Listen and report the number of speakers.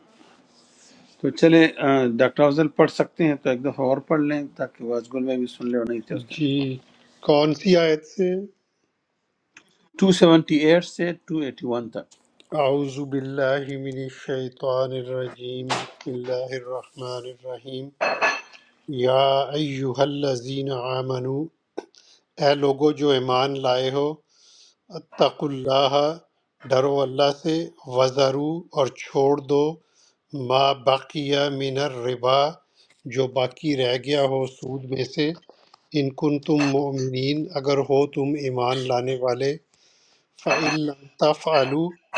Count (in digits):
2